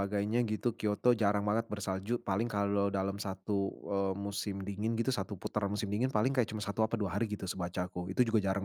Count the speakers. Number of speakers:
one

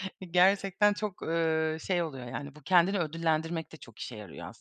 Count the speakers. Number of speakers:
one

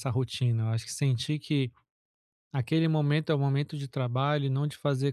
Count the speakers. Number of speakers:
one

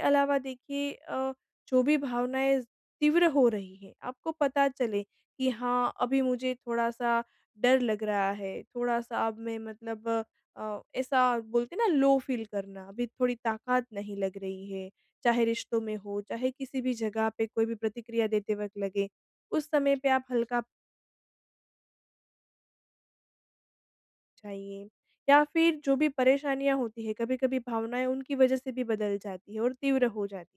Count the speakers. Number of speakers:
one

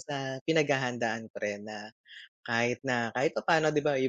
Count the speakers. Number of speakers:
one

